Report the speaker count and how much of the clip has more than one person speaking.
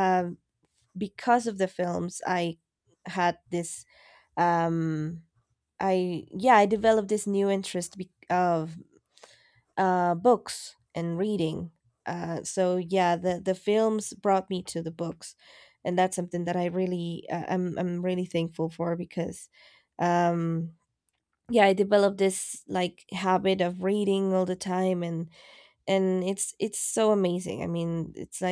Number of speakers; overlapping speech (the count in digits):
1, no overlap